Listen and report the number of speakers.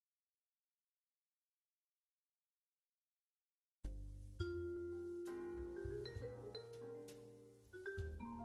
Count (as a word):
zero